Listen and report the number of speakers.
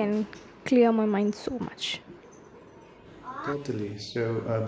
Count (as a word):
two